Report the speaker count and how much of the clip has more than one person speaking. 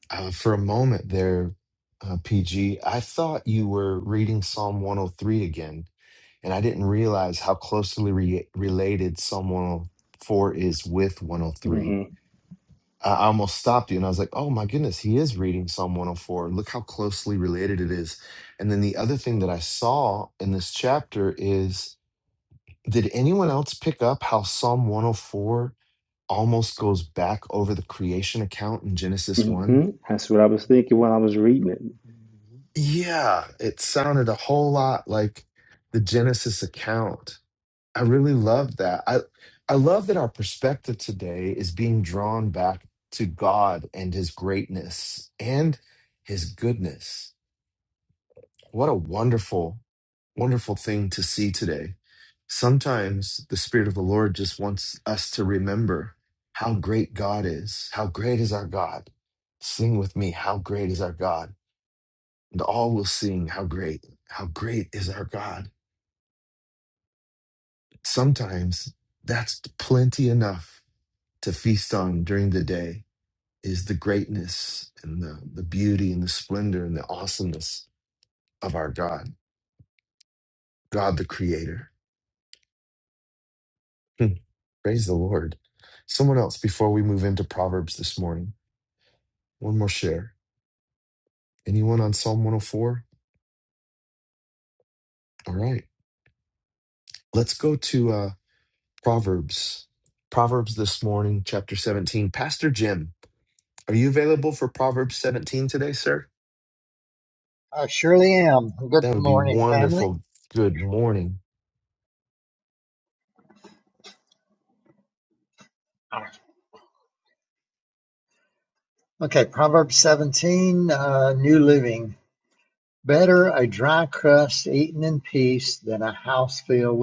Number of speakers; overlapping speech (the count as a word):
three, about 1%